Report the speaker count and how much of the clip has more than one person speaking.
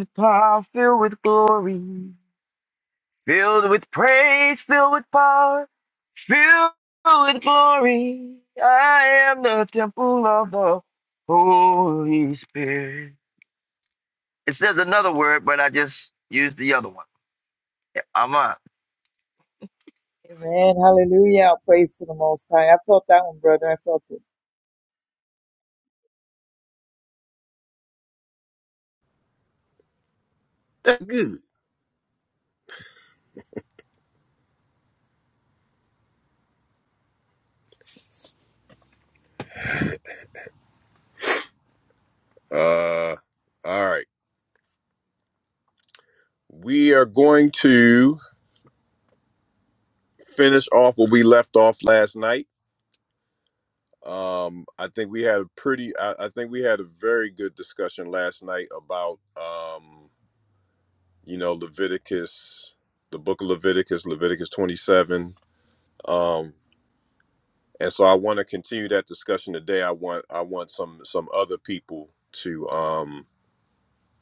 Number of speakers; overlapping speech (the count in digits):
3, no overlap